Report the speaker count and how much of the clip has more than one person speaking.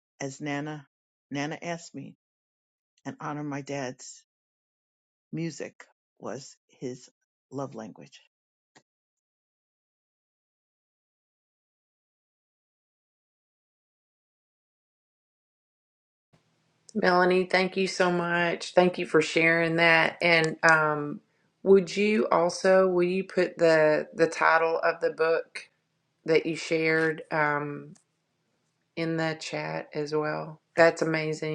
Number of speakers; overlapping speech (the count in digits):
2, no overlap